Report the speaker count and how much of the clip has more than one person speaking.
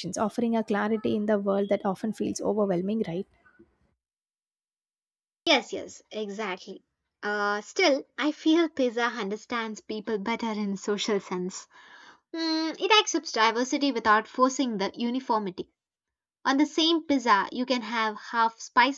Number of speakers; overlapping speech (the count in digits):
2, no overlap